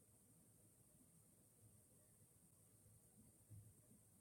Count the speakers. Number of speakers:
0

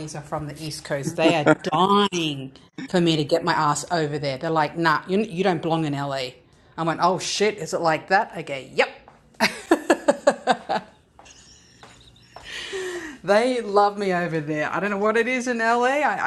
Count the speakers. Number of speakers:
1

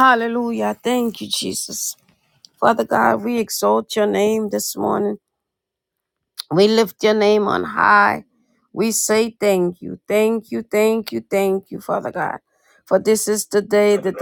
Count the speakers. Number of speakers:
1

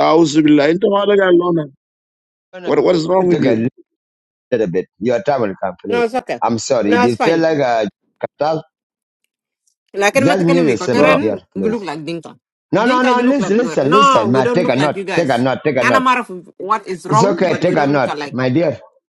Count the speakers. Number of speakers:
3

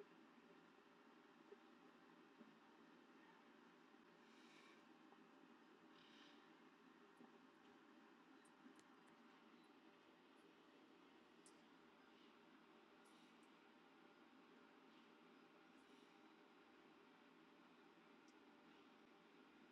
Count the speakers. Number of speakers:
0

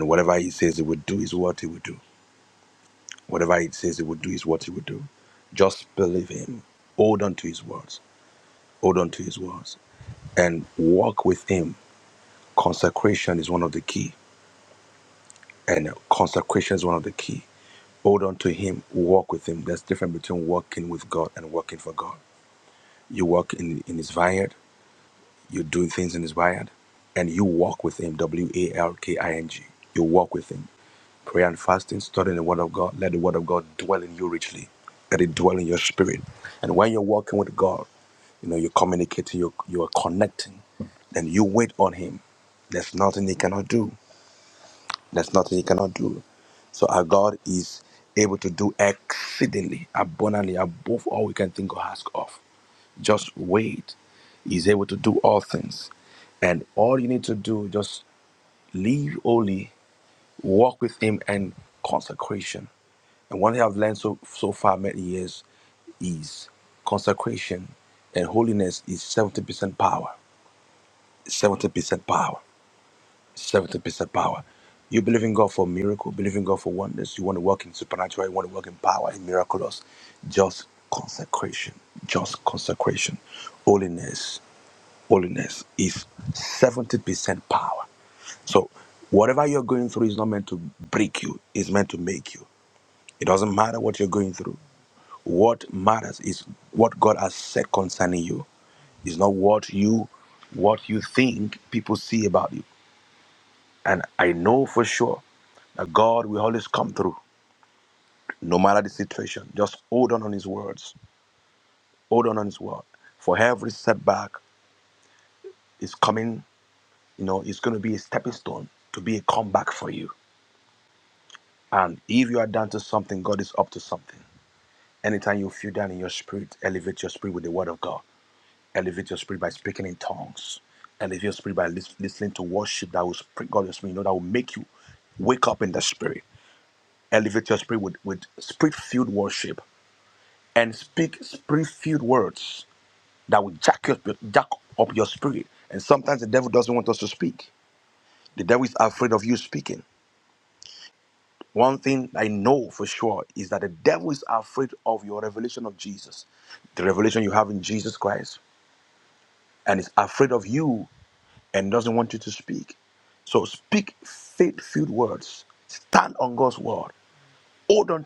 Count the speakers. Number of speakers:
1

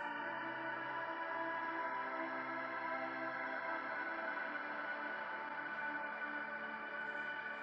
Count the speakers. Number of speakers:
0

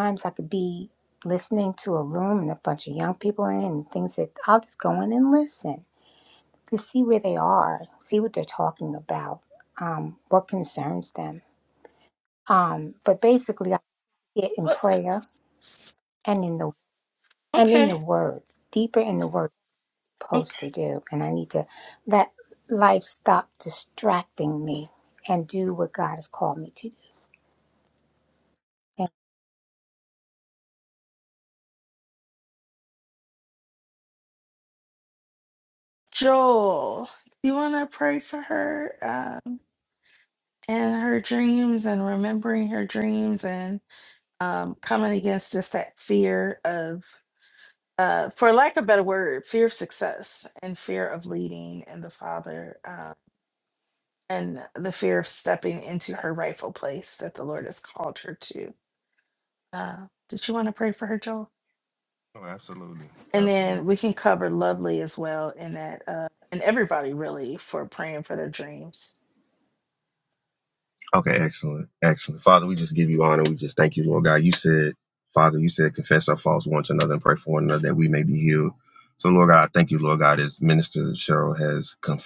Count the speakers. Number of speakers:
3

